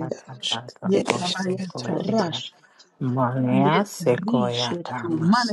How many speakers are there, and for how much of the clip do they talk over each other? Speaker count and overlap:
three, about 47%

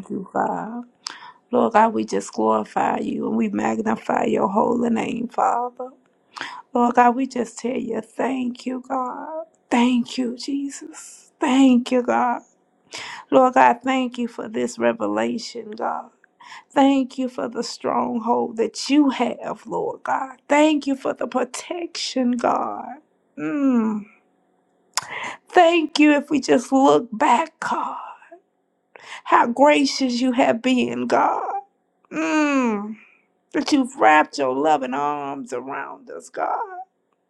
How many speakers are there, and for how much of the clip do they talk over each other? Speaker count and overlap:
one, no overlap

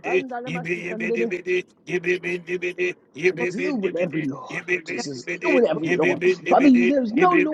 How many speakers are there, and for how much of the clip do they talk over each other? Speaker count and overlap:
two, about 64%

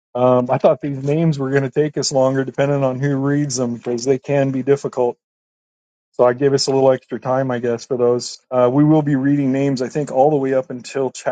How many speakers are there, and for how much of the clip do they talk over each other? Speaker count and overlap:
one, no overlap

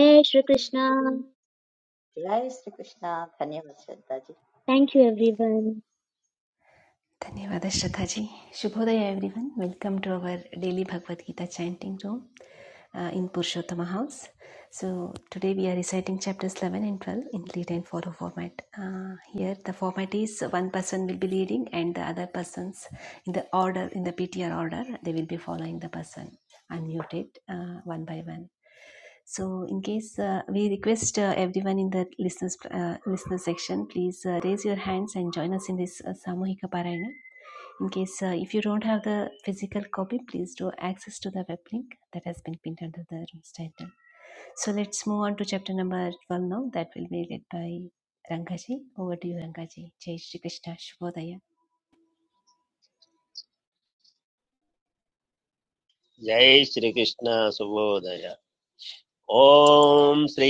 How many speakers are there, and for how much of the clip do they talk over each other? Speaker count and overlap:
four, no overlap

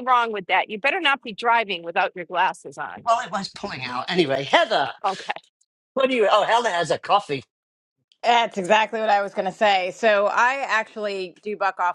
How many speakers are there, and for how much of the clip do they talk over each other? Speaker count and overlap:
three, about 1%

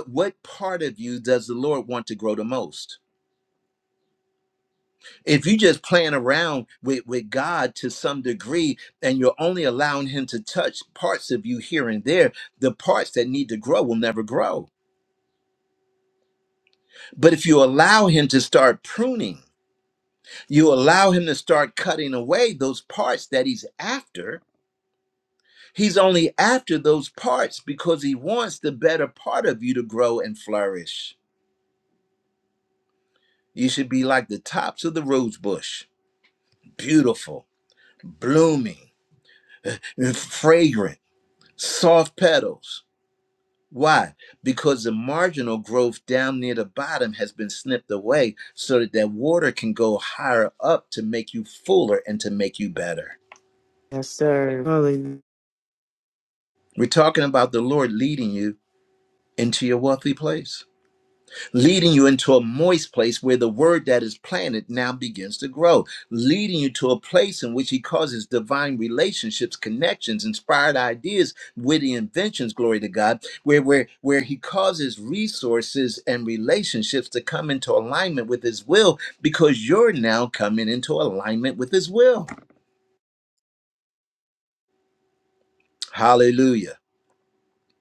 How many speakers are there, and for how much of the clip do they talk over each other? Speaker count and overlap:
two, no overlap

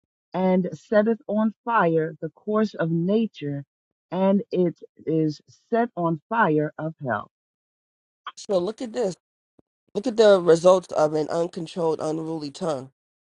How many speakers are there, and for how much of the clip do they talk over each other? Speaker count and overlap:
two, no overlap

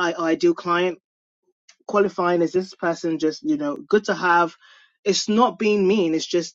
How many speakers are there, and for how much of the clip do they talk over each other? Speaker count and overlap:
one, no overlap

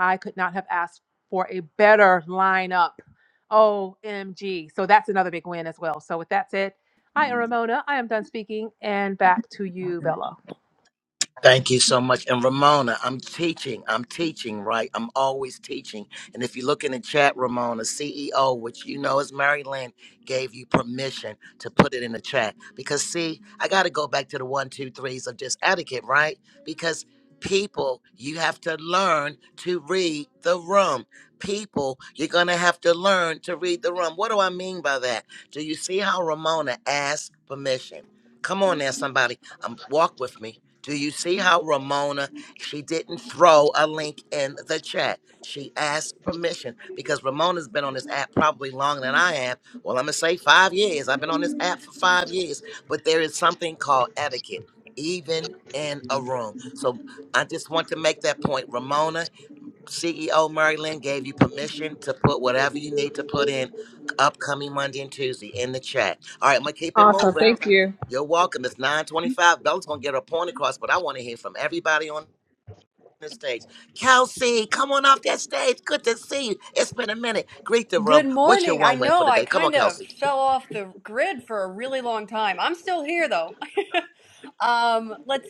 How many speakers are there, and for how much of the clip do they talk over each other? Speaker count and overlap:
three, about 2%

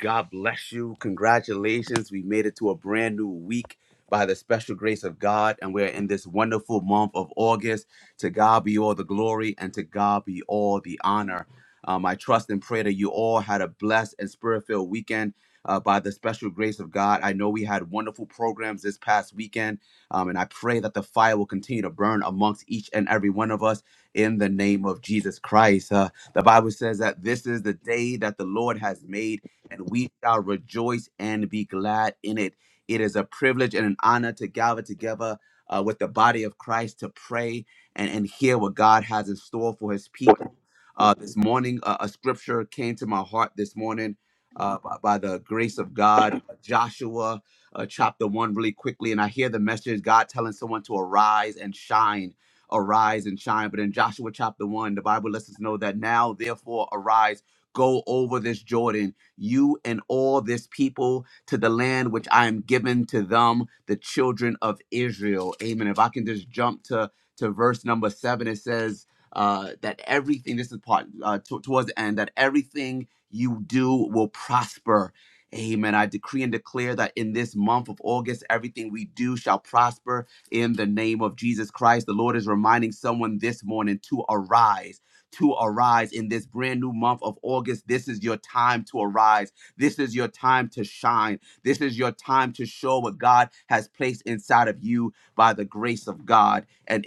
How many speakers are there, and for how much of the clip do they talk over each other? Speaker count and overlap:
one, no overlap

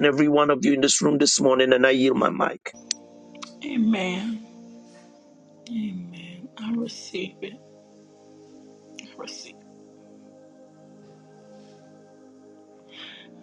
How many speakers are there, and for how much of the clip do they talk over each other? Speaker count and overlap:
two, no overlap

